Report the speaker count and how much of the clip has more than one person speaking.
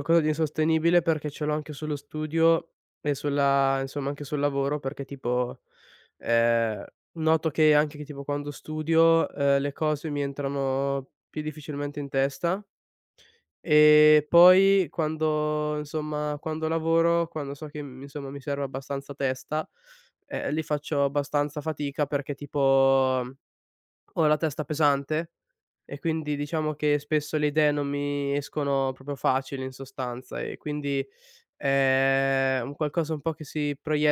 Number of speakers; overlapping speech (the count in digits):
1, no overlap